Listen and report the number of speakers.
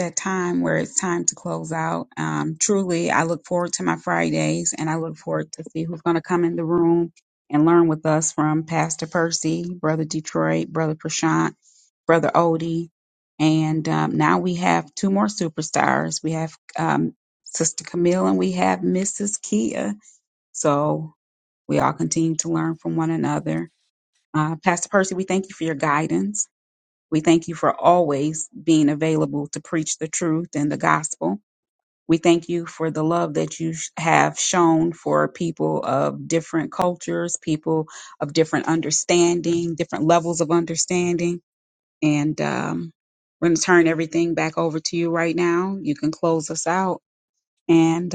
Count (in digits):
1